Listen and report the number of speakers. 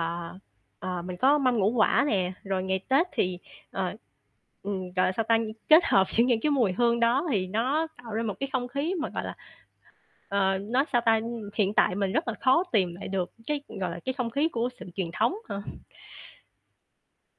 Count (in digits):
1